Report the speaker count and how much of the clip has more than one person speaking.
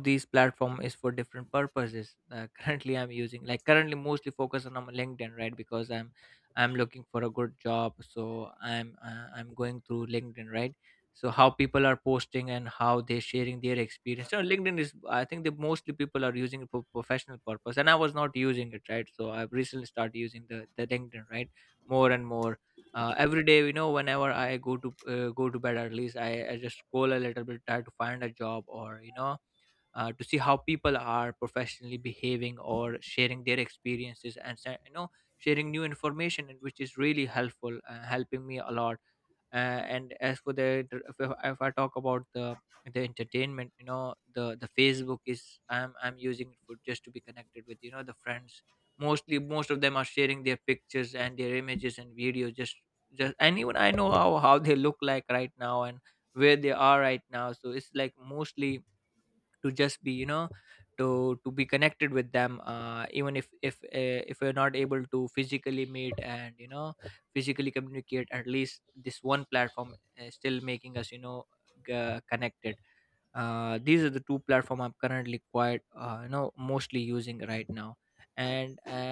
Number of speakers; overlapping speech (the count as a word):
one, no overlap